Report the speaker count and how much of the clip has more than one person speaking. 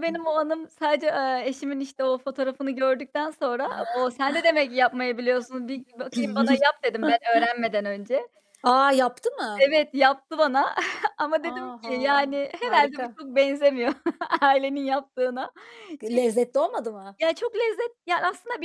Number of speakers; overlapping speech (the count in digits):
2, about 8%